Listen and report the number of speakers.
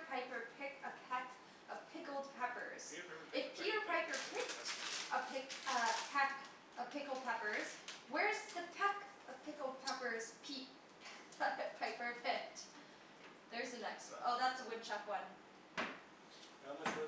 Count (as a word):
two